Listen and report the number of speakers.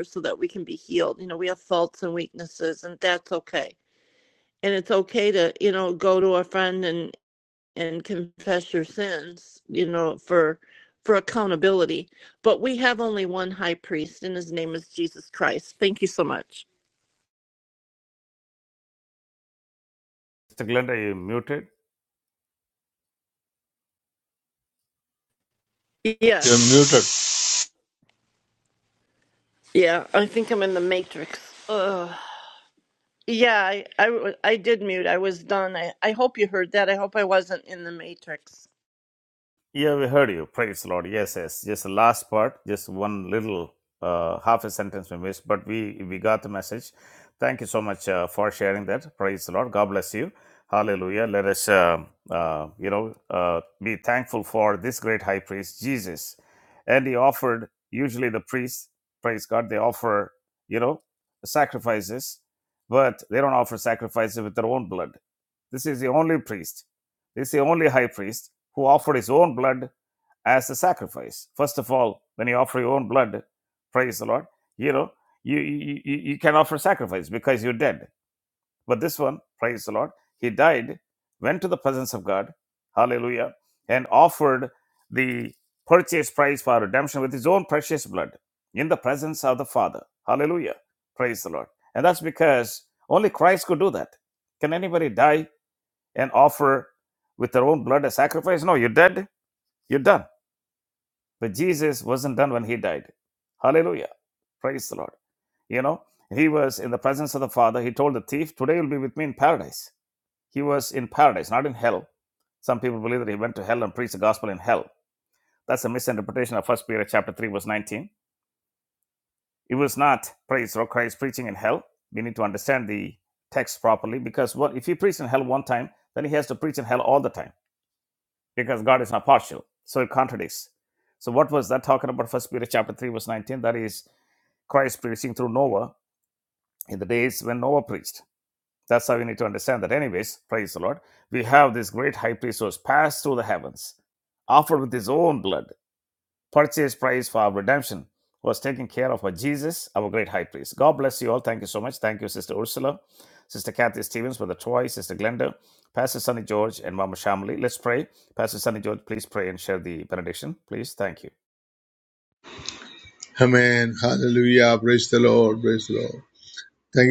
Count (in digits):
3